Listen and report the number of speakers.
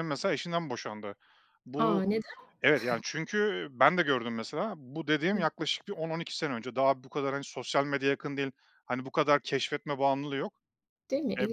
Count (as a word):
two